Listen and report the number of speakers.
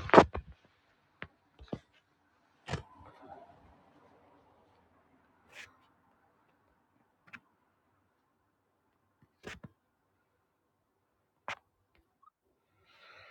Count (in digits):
0